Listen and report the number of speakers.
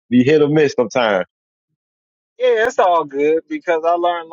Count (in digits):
2